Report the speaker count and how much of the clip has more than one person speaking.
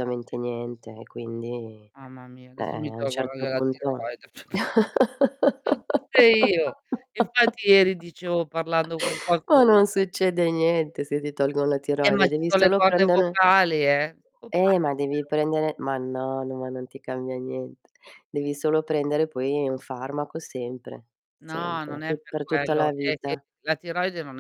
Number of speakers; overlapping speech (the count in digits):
2, about 22%